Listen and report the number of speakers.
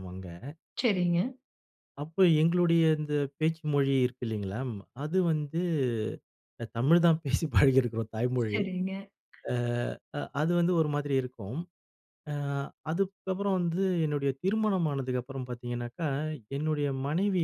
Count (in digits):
2